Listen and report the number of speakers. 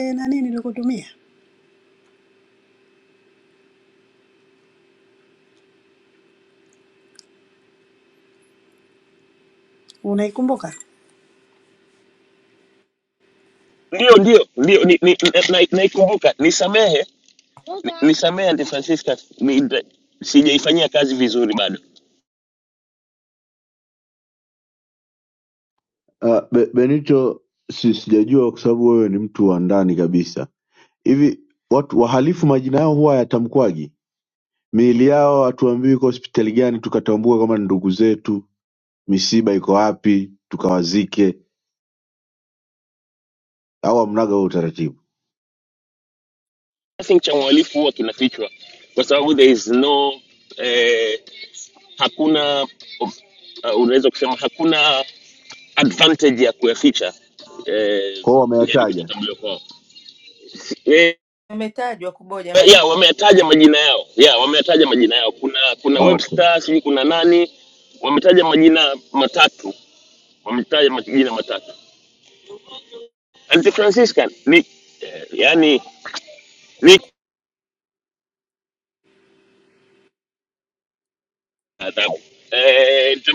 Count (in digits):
4